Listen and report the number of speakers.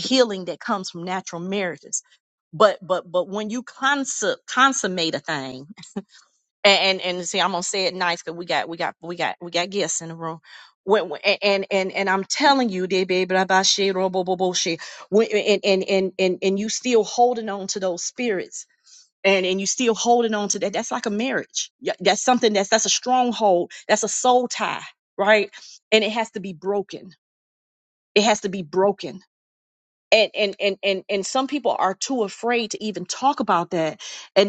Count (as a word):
one